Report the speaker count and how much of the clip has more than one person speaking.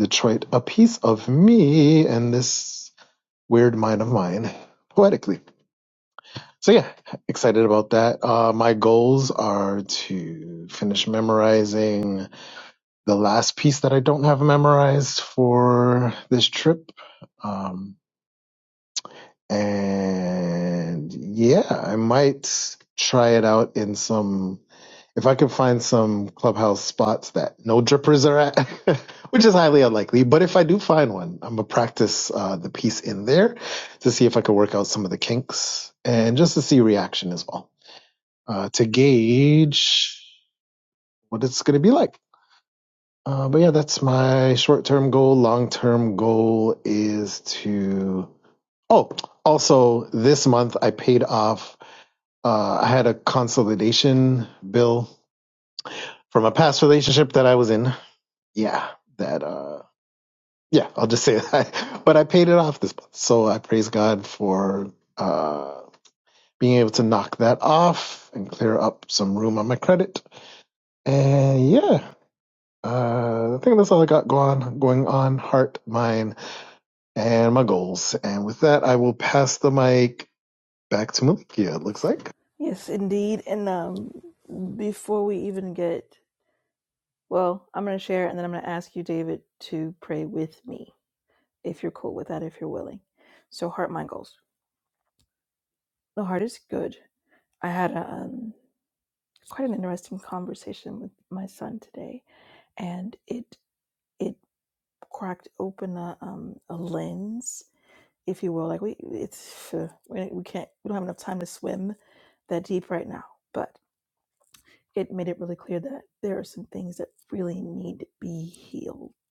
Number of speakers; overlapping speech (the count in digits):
2, no overlap